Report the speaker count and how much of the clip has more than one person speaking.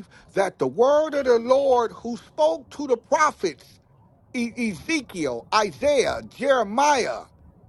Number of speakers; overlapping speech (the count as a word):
one, no overlap